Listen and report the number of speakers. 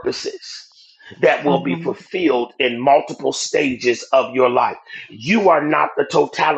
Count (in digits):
1